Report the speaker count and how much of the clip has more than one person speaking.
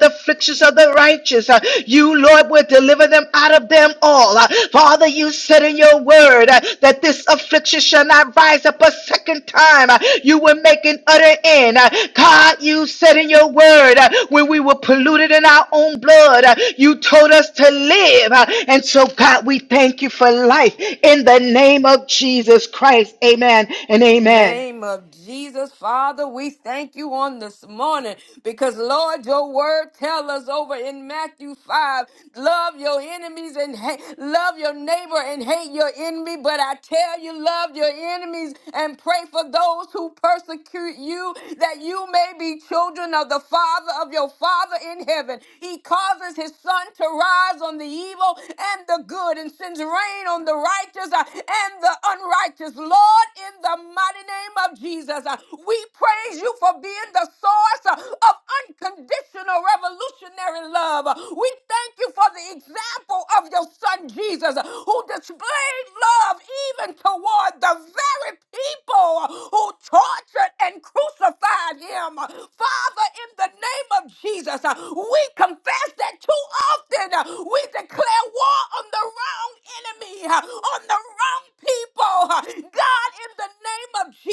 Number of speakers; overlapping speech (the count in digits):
2, under 1%